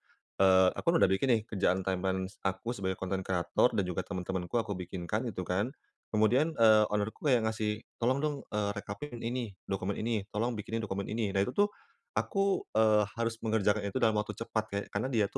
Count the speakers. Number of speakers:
1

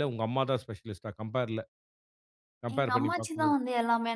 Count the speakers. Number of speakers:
2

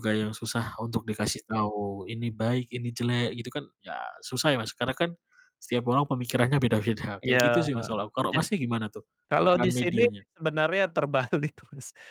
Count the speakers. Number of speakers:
2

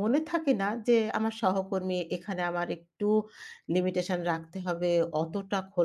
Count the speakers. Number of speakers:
1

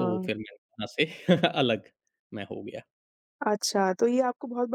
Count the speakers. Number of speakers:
2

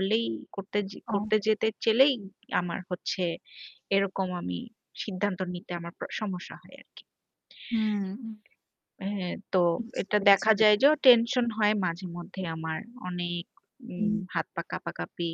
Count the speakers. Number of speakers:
2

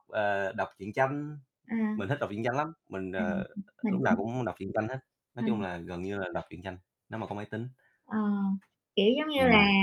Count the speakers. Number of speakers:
2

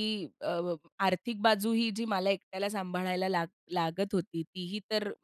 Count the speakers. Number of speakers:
1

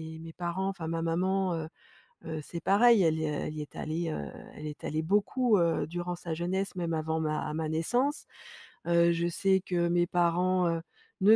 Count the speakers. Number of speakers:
1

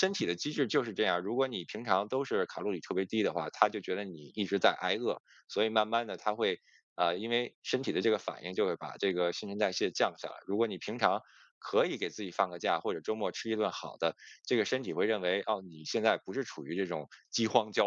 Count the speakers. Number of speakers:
1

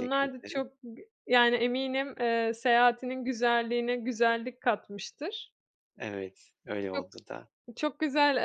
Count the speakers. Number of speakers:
2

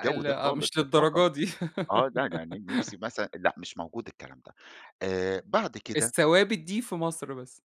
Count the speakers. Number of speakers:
2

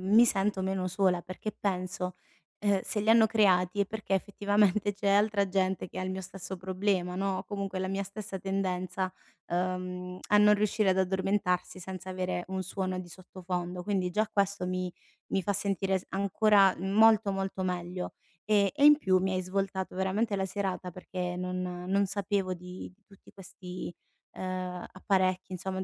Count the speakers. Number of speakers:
1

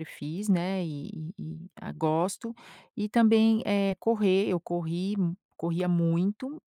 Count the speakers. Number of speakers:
1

